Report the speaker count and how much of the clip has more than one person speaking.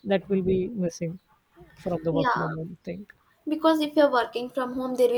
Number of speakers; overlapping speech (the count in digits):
2, about 8%